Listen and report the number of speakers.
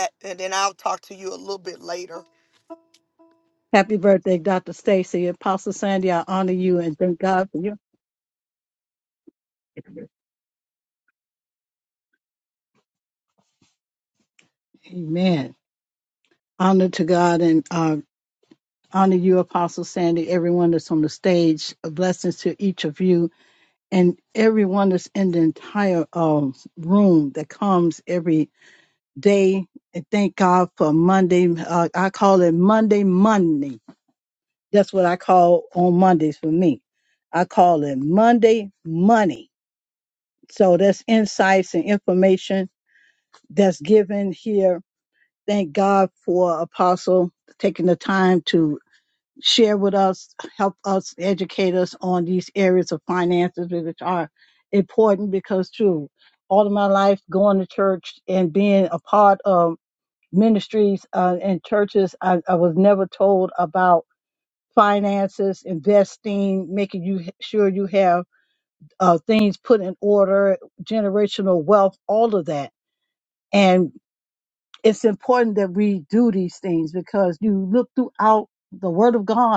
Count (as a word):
two